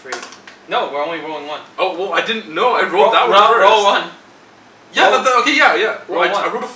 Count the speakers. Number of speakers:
two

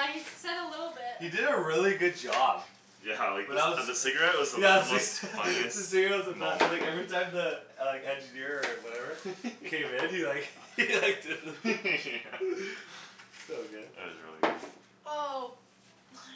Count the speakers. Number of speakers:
three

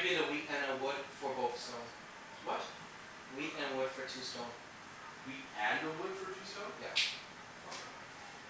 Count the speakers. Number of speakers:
two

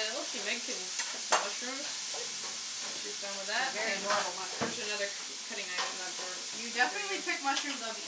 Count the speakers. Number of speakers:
two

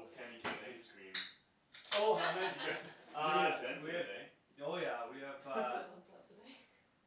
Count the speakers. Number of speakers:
three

